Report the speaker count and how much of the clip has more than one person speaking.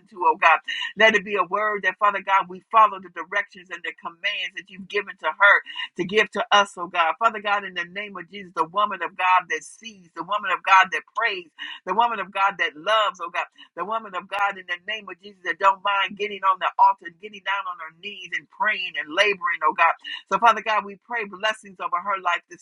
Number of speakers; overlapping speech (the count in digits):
1, no overlap